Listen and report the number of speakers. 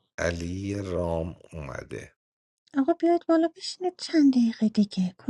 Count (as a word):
two